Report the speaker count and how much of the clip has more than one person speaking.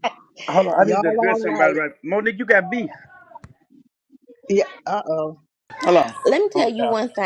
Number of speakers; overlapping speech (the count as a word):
three, about 19%